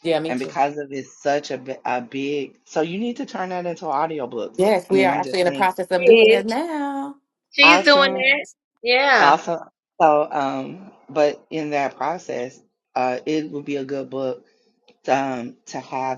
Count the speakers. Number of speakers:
3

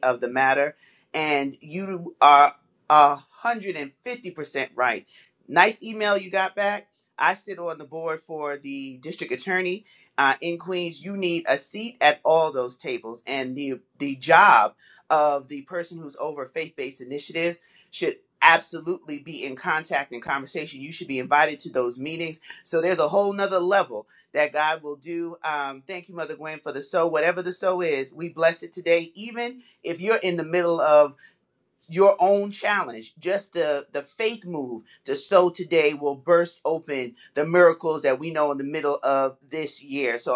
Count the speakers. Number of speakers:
1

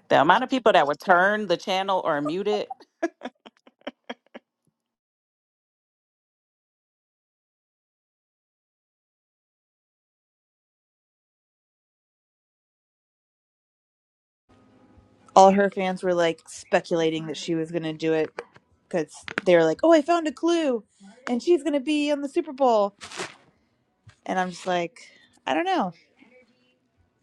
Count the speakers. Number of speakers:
2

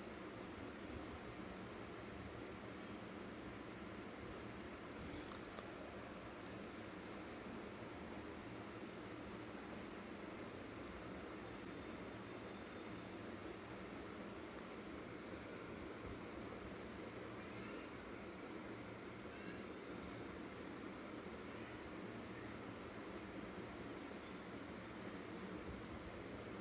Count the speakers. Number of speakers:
0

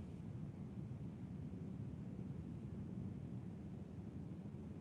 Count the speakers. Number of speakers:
0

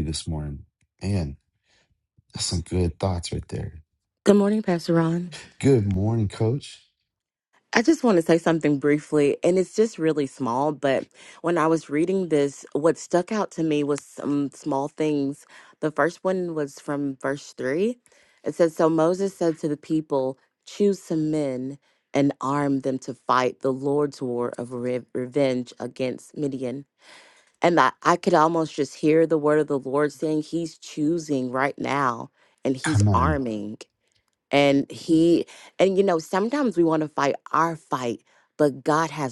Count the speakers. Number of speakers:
2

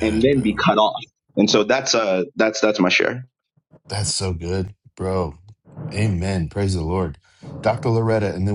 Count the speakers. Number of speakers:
2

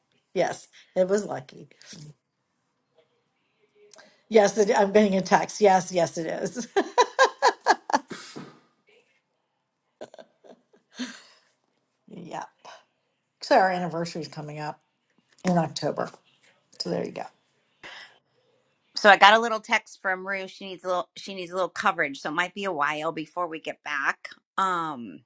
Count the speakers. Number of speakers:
2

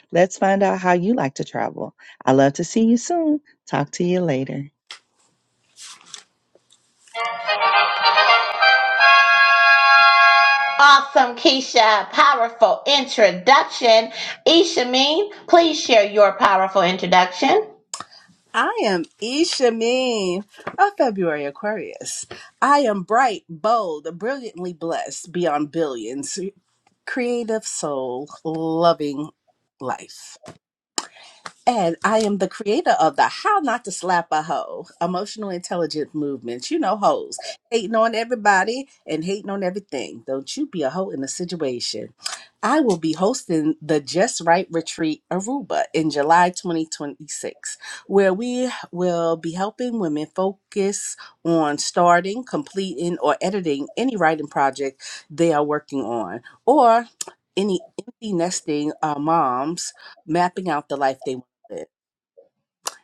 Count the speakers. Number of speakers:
3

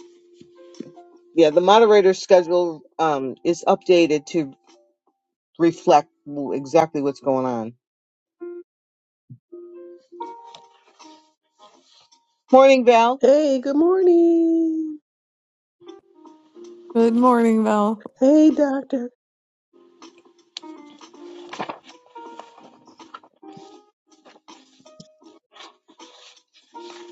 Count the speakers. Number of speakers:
3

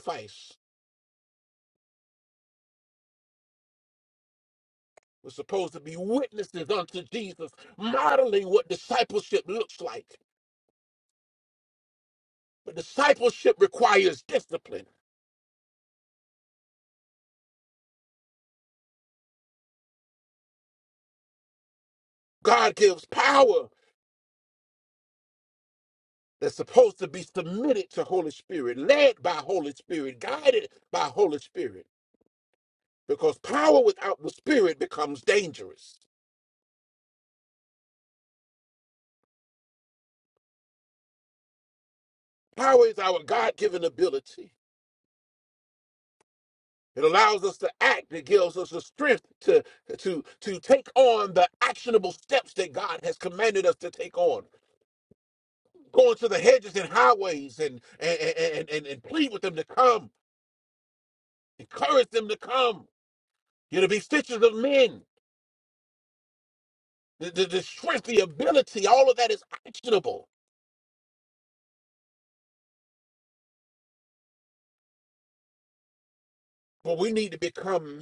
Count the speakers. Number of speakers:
1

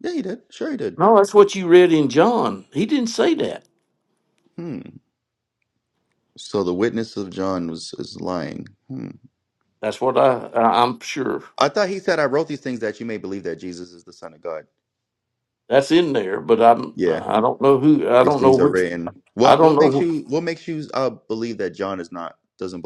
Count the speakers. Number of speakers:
2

